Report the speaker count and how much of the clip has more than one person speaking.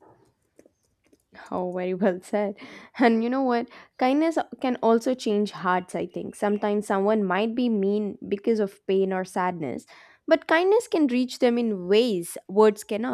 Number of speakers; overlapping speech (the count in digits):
1, no overlap